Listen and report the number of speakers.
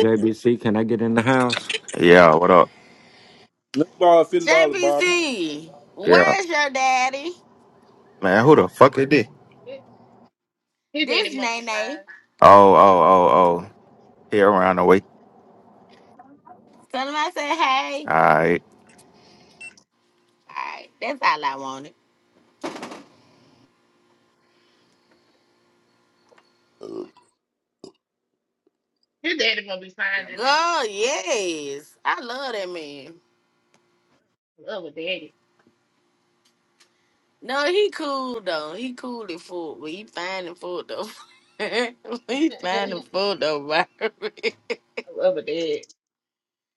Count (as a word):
five